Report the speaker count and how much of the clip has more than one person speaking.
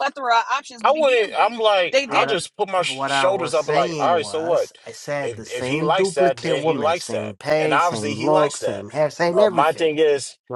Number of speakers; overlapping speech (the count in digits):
3, about 69%